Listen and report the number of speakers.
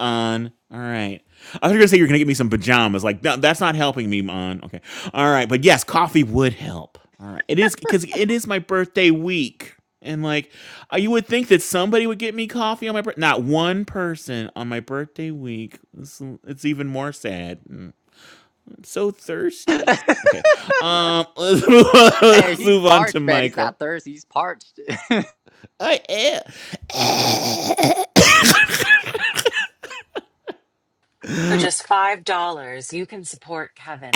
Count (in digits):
3